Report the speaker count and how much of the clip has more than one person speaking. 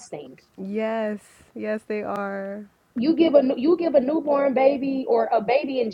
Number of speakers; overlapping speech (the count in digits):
2, no overlap